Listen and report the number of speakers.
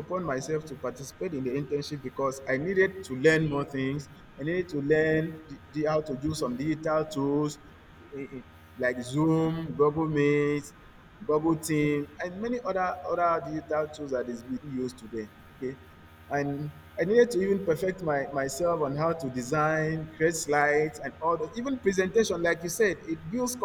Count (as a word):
one